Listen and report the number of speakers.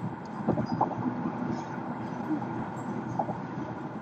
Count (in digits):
0